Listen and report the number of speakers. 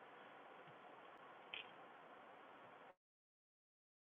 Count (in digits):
0